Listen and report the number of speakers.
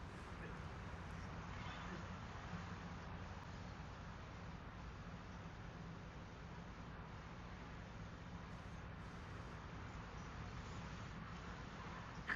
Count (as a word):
zero